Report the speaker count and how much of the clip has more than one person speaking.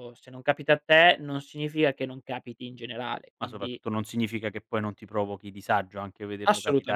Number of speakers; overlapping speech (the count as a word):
two, about 13%